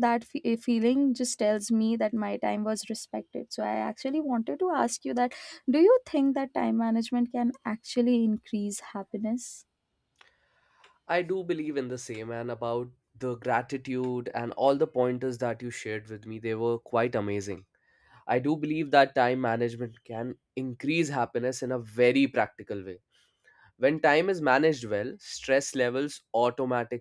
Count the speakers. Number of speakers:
two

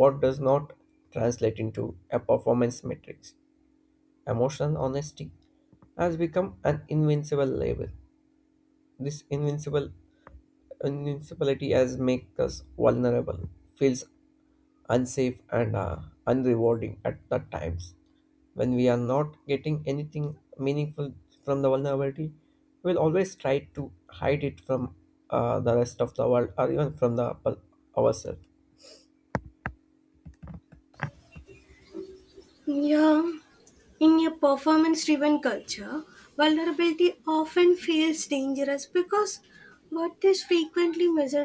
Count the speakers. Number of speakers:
two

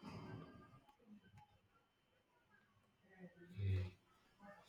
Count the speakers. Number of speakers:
zero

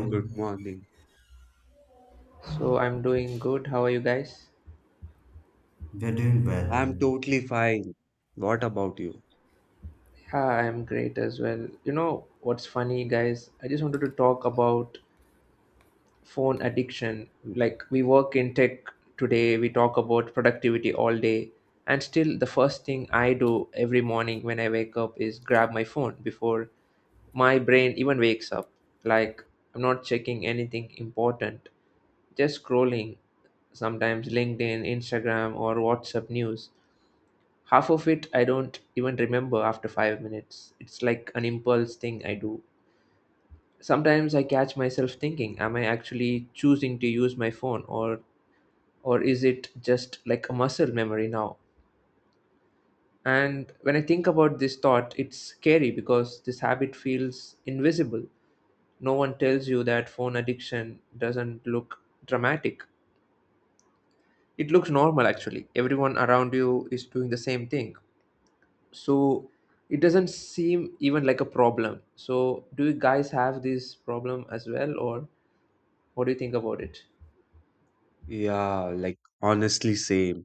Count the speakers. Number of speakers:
three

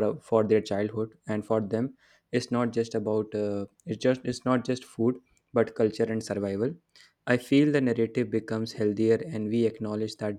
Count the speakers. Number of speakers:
one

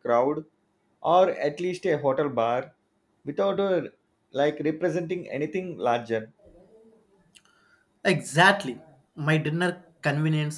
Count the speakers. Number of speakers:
two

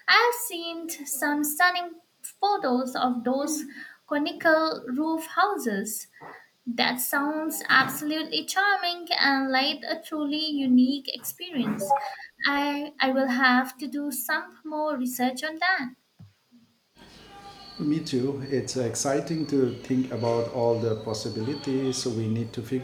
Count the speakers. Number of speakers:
two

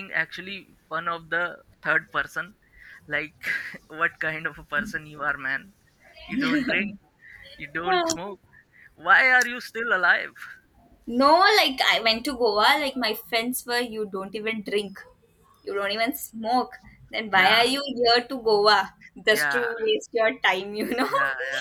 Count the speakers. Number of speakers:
two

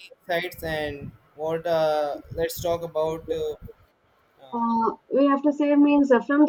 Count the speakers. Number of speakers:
two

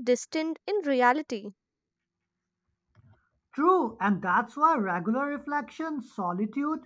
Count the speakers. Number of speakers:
two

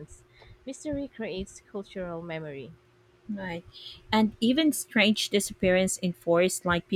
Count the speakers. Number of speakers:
two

